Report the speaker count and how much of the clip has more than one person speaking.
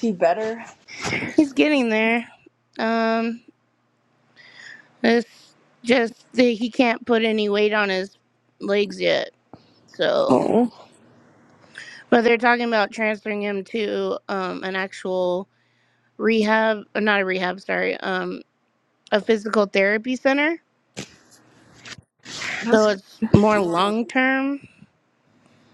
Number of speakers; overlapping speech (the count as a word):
two, about 2%